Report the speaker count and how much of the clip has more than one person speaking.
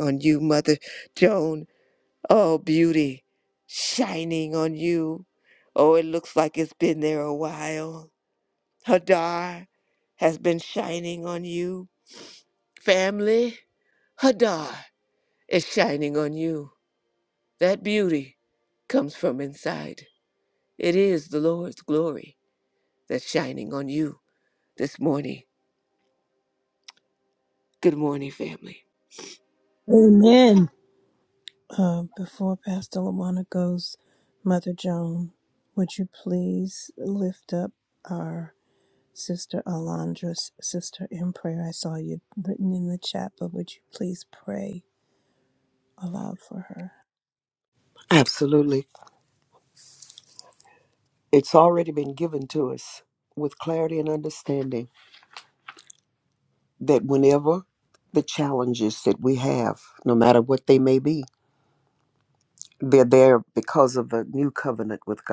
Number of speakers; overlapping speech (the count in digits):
3, no overlap